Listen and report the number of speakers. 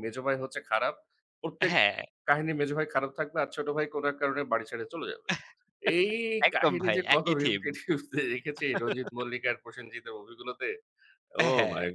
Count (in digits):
2